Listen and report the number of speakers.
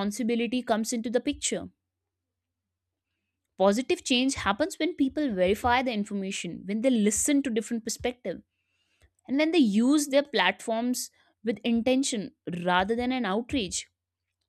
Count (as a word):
one